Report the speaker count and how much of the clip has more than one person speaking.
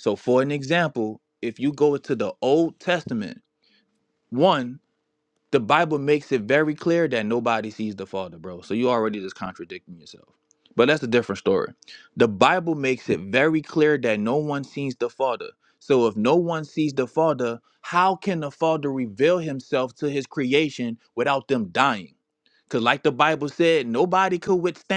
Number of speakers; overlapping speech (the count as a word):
one, no overlap